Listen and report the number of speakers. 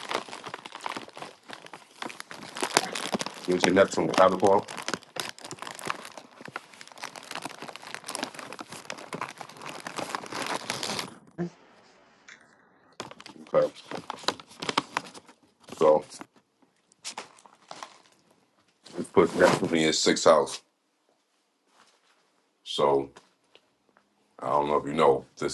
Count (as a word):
one